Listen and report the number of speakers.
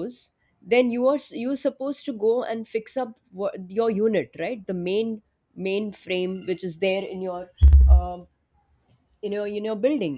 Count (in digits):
1